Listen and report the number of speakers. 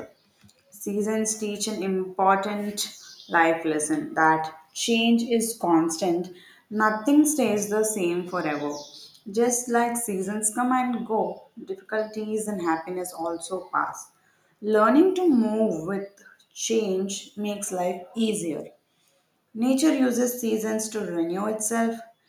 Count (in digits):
1